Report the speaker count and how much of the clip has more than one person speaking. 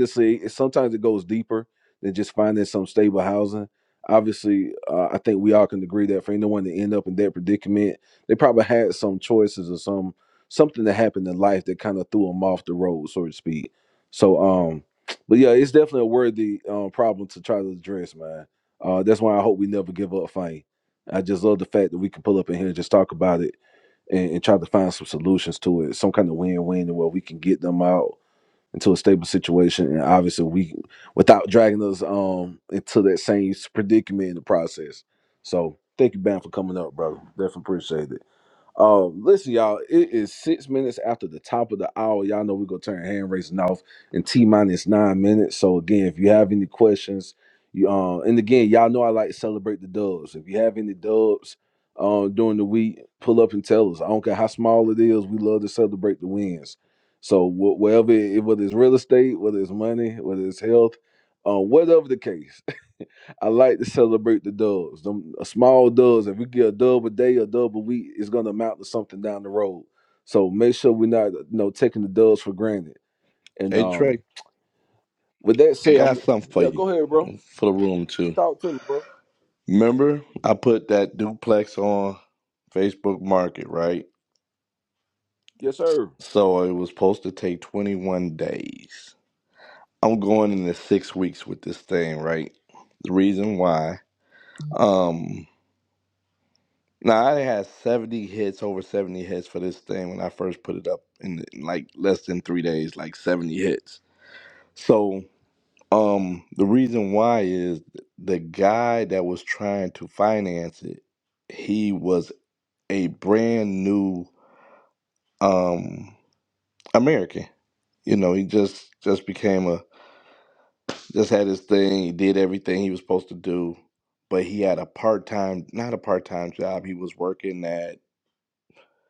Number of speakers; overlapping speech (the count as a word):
two, about 1%